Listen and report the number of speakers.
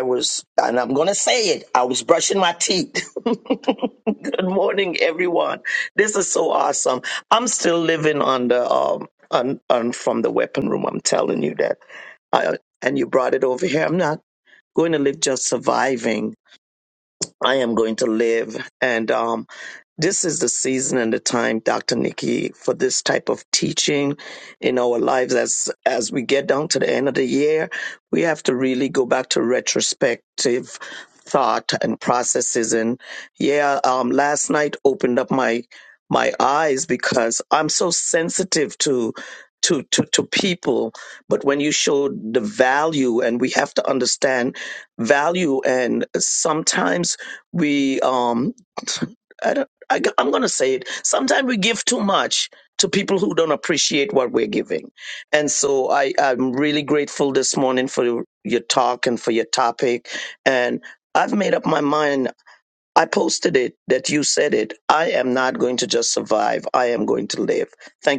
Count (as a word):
one